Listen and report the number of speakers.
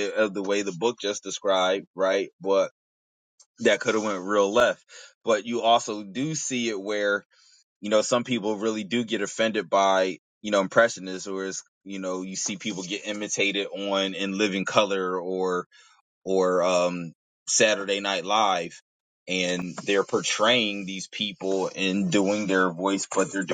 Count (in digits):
1